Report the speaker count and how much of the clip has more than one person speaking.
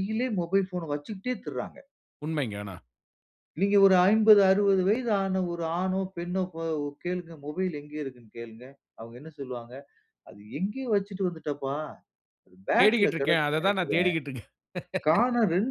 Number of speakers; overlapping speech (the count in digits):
2, about 9%